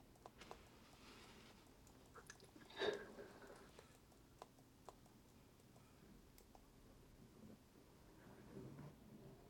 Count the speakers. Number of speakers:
0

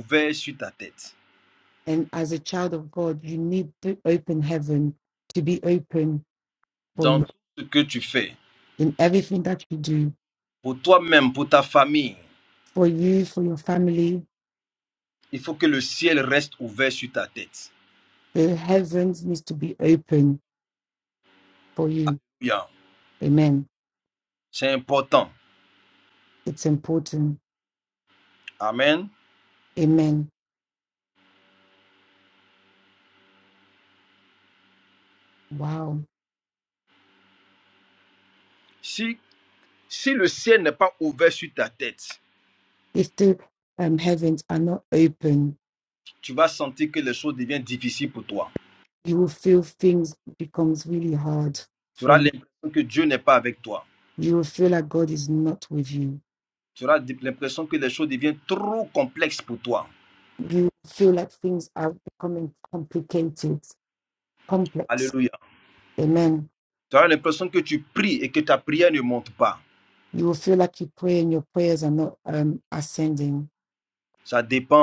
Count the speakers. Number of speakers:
2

